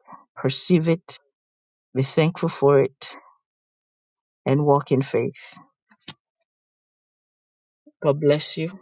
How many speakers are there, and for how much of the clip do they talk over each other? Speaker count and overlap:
1, no overlap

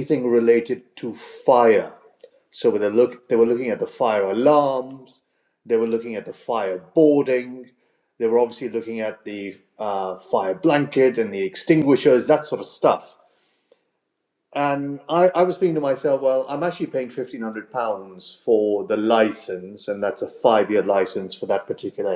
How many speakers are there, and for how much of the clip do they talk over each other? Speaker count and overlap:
1, no overlap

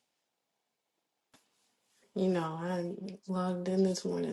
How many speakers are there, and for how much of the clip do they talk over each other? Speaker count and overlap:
1, no overlap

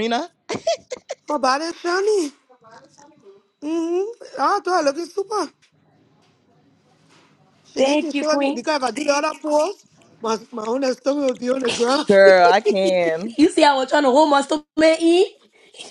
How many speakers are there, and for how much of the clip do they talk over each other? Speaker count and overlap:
3, about 5%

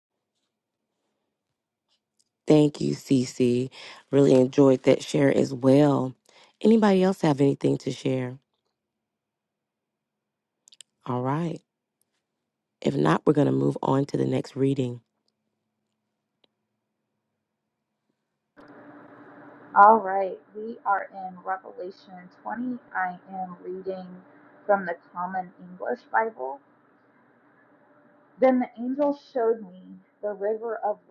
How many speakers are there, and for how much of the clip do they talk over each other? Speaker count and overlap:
2, no overlap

